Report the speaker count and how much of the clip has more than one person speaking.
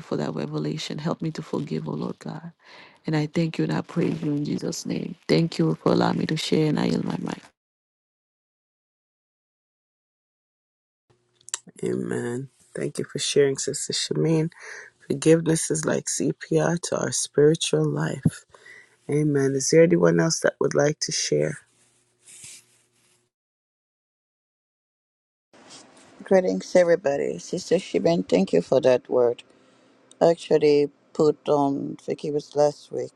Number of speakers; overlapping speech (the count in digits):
3, no overlap